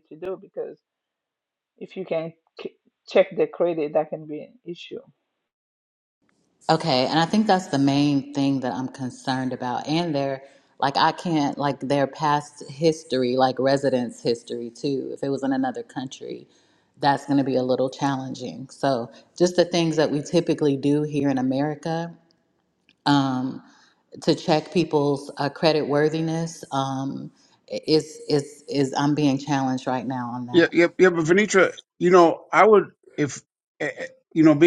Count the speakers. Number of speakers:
3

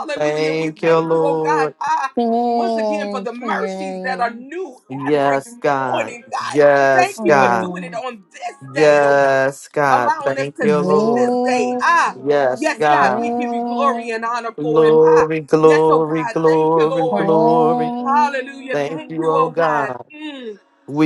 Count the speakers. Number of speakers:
3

